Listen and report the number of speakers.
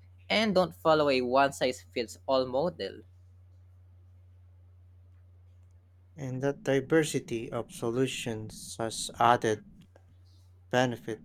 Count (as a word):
two